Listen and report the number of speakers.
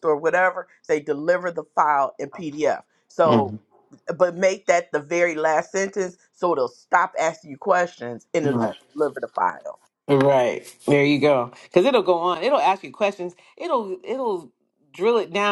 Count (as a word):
two